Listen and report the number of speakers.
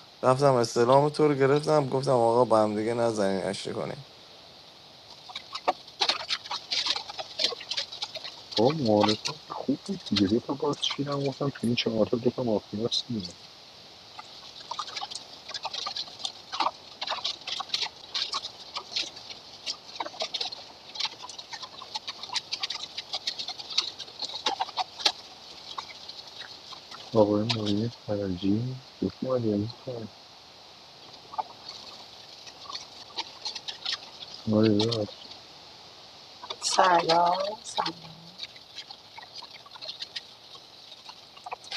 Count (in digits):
3